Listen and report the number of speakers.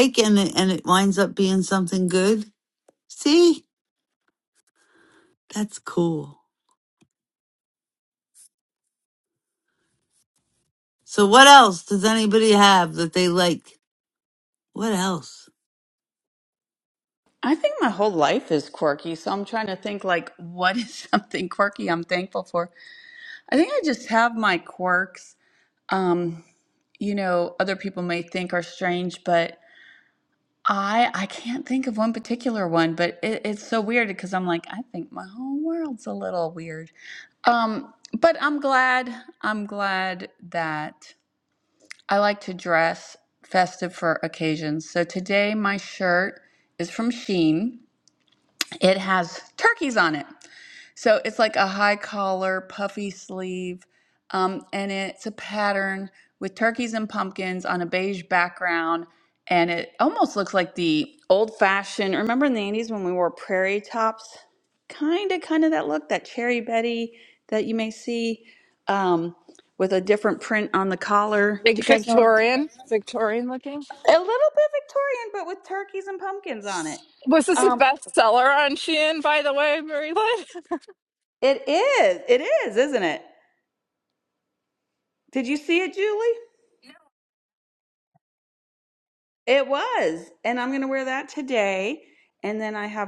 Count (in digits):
3